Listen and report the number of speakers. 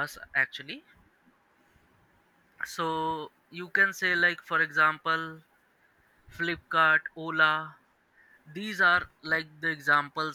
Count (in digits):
1